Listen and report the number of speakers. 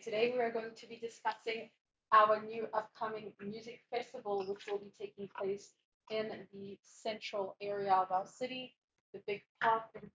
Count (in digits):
1